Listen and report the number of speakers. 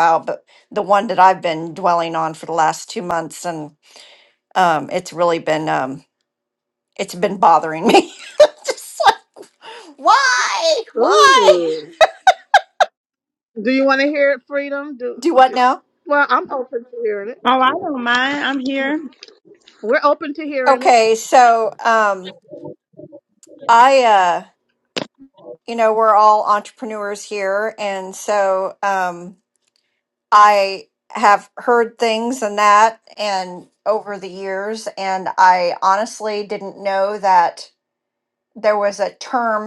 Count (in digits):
3